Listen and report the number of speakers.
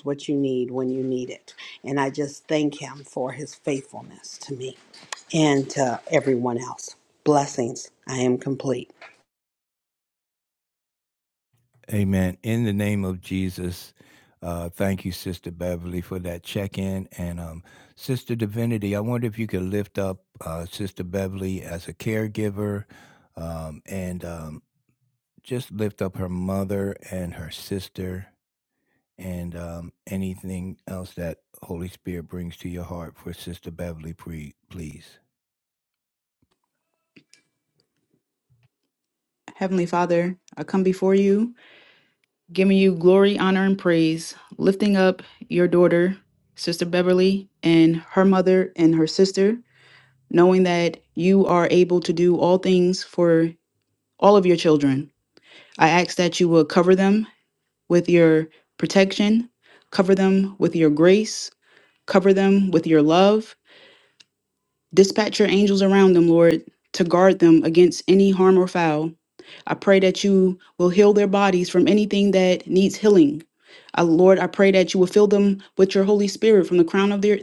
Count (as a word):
three